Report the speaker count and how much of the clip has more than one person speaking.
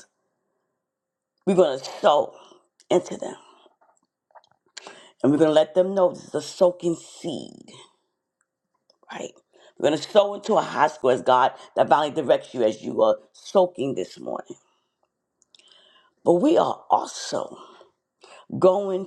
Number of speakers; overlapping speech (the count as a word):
one, no overlap